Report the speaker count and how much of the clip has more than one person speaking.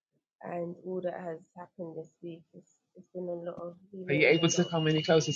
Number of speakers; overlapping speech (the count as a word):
two, about 12%